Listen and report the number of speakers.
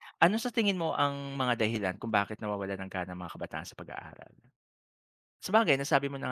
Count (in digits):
1